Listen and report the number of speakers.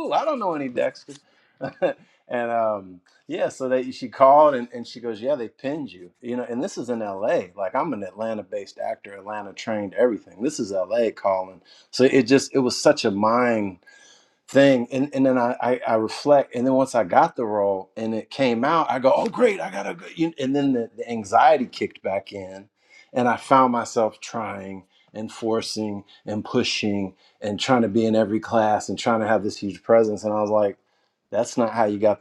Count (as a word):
one